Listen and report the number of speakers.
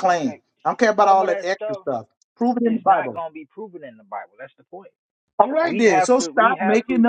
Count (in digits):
2